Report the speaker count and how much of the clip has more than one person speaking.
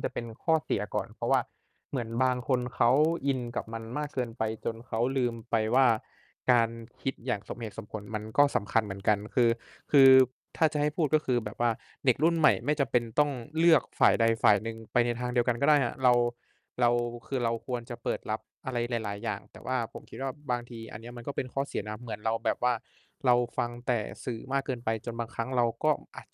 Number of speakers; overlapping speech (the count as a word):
one, no overlap